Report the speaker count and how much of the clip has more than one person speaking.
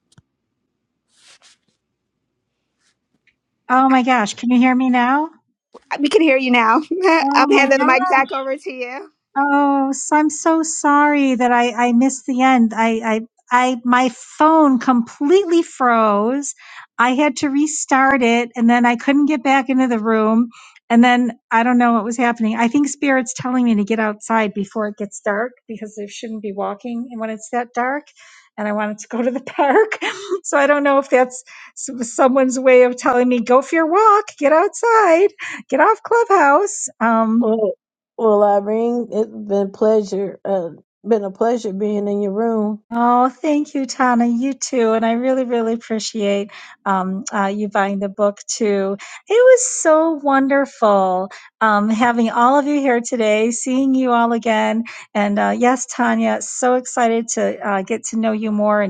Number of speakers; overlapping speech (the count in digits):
3, about 1%